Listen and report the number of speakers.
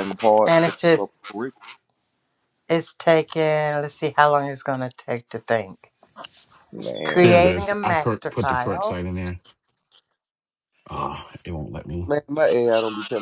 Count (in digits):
3